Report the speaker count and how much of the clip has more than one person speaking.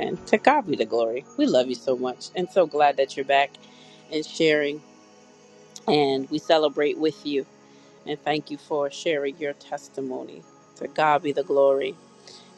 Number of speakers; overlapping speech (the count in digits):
1, no overlap